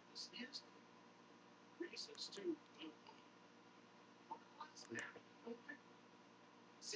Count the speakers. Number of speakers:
0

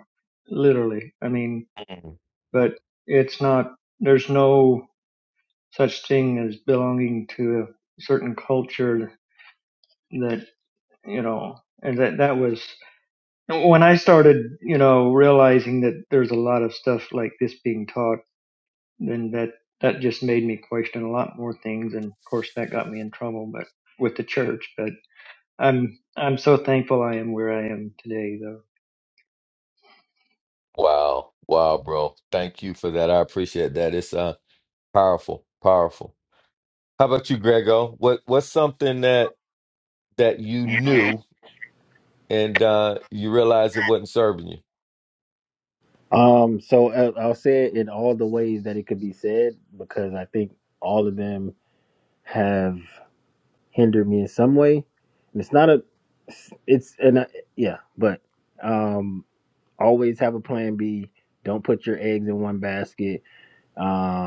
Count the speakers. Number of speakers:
3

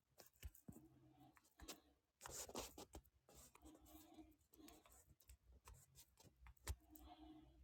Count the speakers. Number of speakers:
0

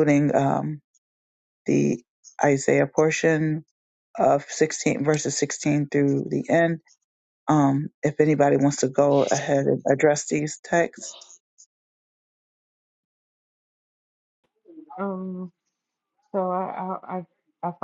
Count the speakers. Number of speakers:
2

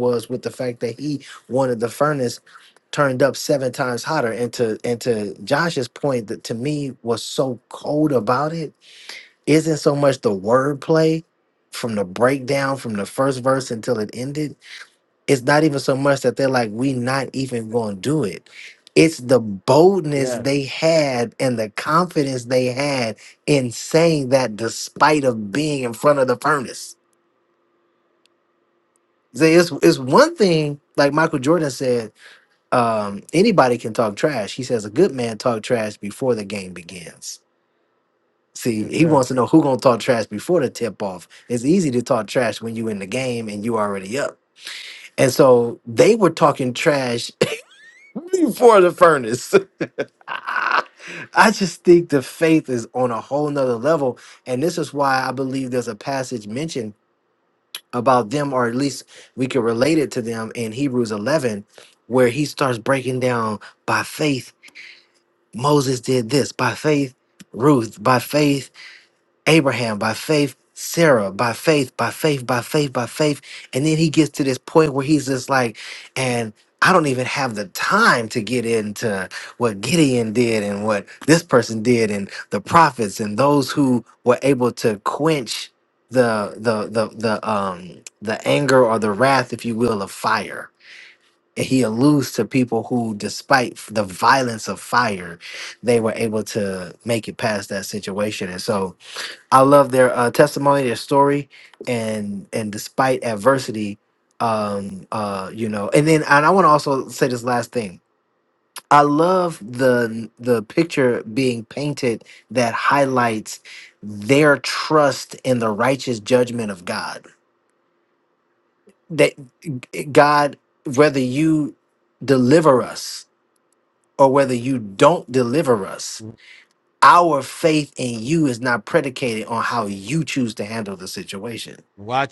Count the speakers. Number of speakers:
2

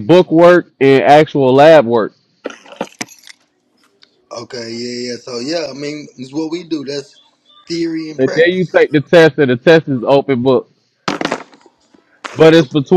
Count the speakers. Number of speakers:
2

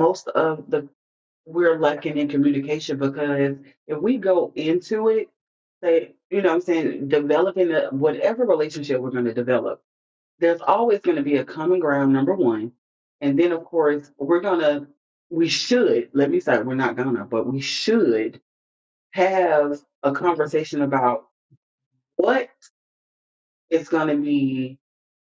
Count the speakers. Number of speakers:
1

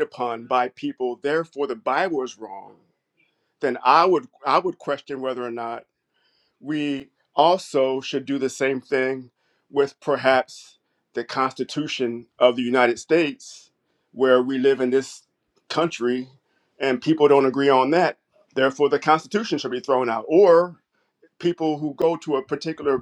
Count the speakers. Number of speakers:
1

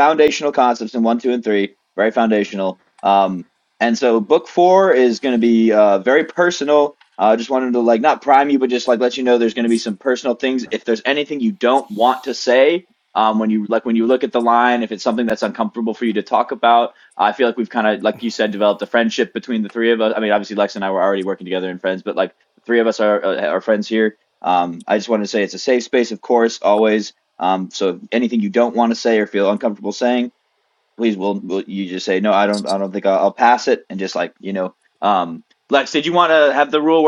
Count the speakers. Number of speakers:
1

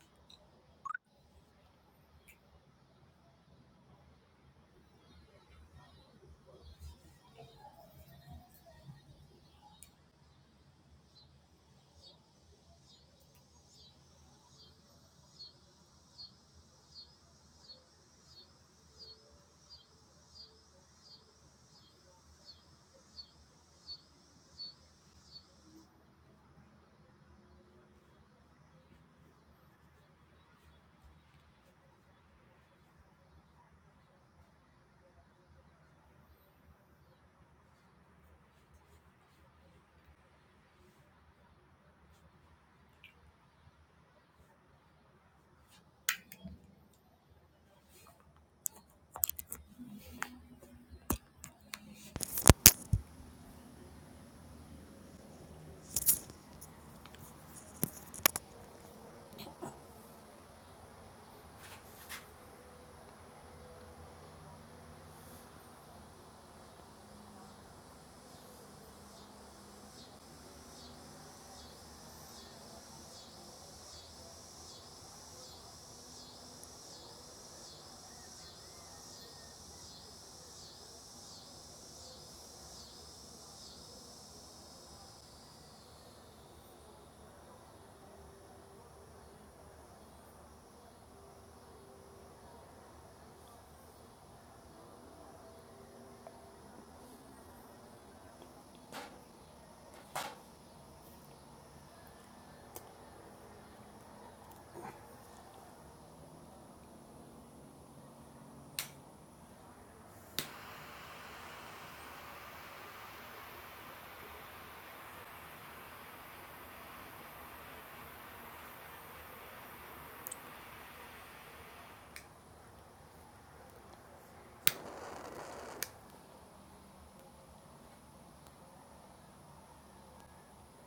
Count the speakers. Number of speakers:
0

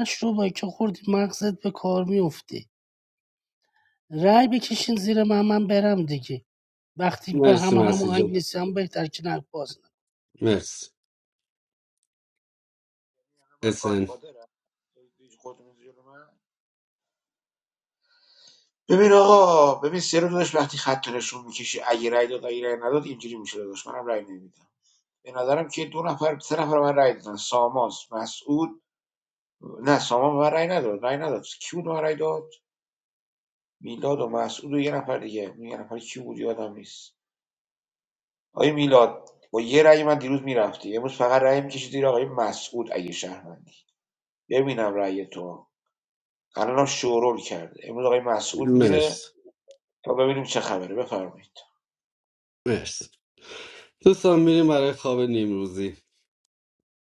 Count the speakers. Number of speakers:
3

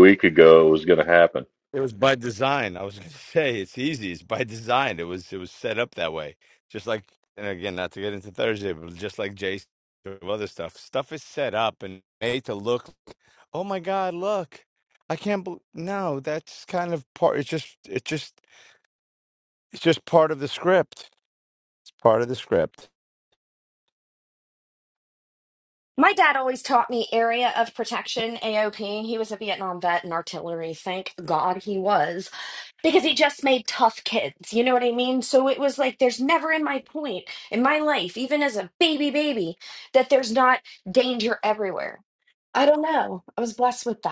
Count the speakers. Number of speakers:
3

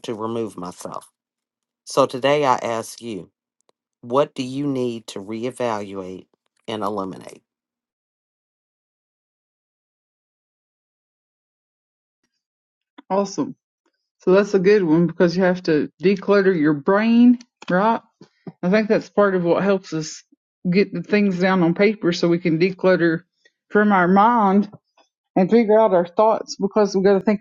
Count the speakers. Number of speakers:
2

